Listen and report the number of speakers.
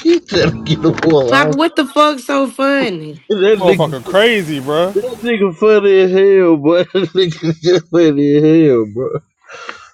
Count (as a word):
three